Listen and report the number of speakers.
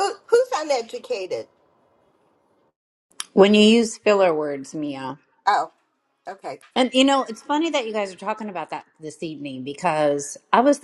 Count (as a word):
two